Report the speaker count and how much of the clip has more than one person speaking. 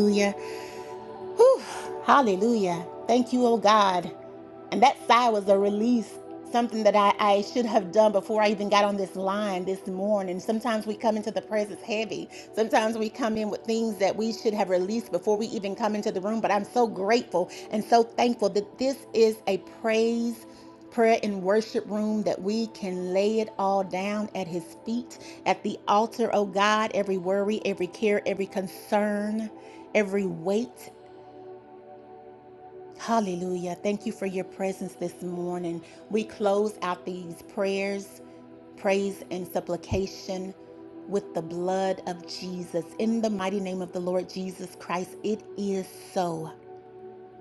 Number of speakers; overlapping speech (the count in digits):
1, no overlap